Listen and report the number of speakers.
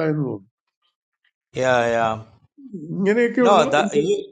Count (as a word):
two